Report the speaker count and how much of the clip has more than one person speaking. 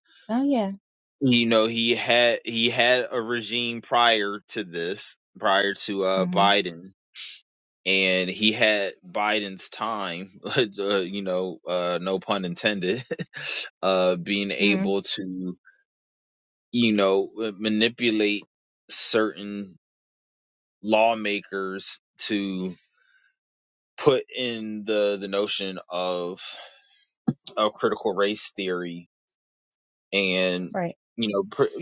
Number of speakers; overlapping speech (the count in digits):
2, about 2%